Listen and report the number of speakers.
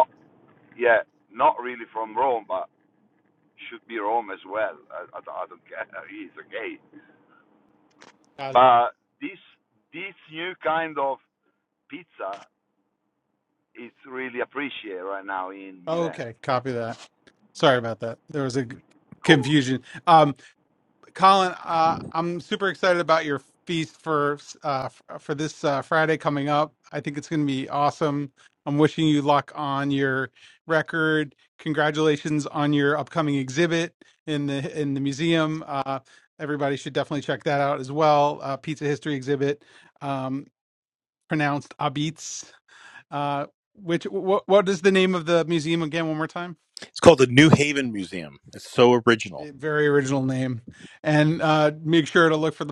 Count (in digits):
3